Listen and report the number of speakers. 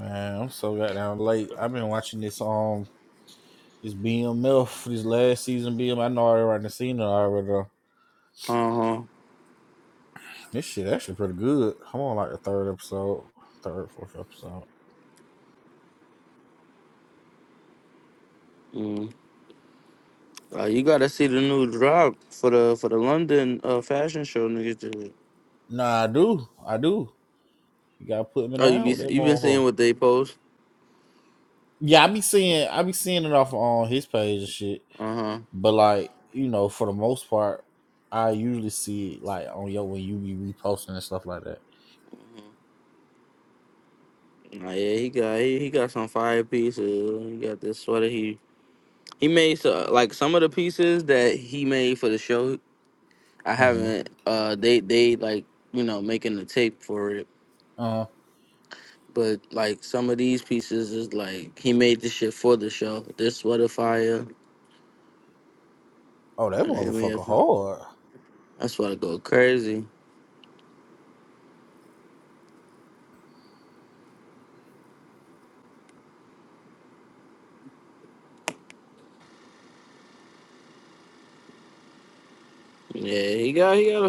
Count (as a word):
two